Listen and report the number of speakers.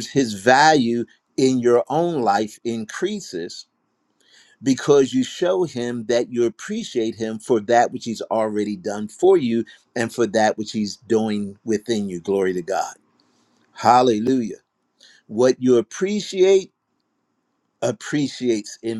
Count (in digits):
1